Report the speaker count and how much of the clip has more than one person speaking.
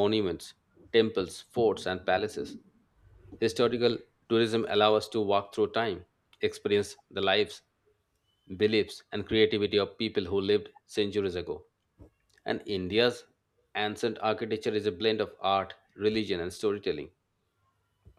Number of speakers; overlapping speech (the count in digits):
1, no overlap